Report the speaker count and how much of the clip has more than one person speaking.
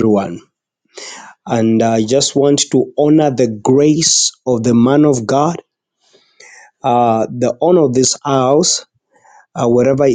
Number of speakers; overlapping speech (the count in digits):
1, no overlap